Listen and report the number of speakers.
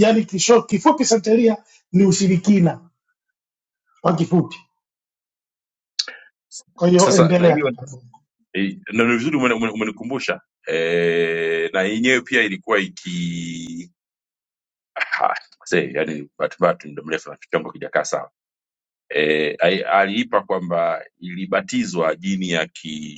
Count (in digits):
2